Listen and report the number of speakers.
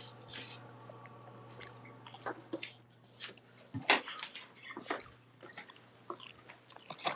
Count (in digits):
0